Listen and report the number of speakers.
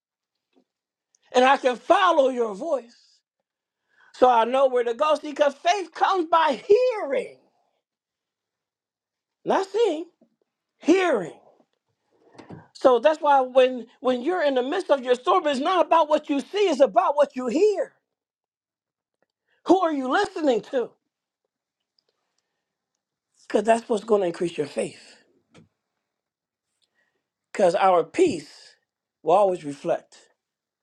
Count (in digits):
1